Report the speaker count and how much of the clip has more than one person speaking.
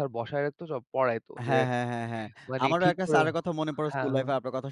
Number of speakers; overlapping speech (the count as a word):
two, about 26%